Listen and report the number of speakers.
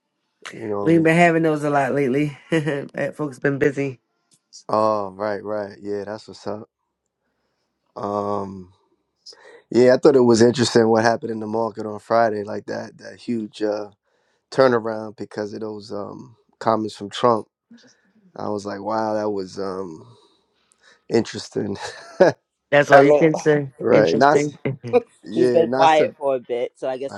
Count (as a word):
three